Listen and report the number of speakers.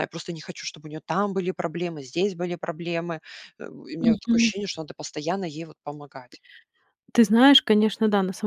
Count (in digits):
2